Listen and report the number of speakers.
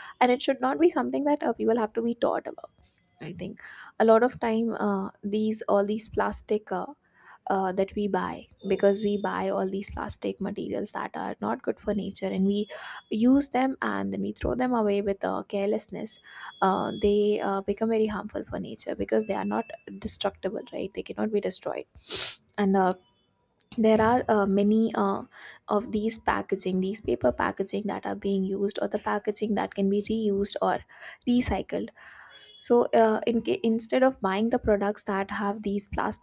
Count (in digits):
1